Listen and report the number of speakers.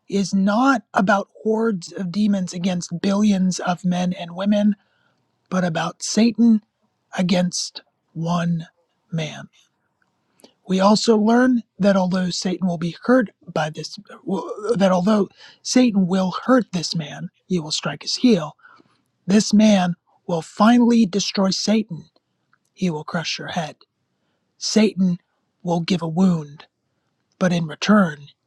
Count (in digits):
1